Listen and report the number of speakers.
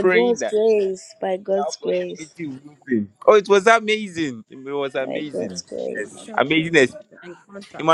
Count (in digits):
3